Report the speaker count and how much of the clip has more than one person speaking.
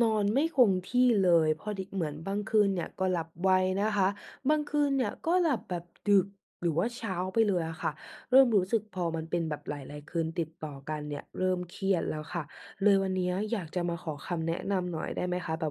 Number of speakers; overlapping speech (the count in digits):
1, no overlap